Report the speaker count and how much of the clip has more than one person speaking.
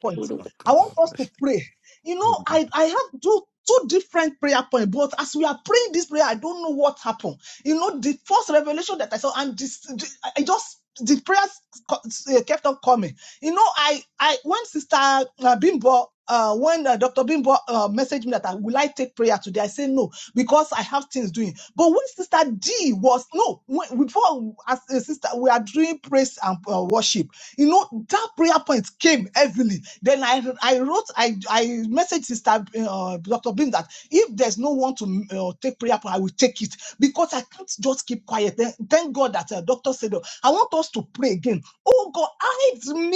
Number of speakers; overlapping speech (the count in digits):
1, no overlap